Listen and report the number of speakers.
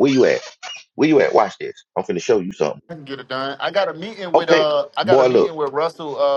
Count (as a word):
two